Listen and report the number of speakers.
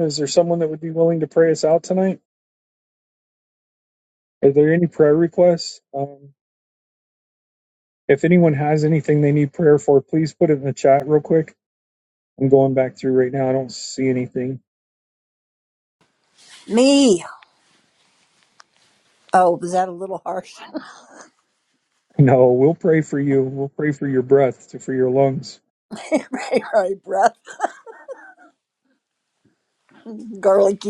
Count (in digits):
2